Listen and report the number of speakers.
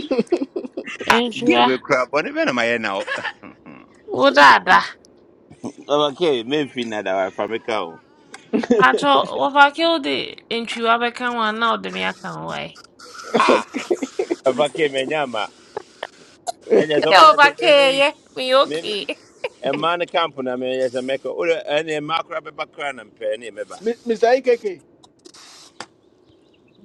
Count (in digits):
3